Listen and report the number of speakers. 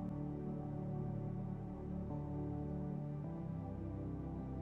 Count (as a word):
zero